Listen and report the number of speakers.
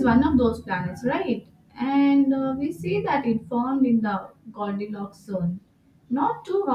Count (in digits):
1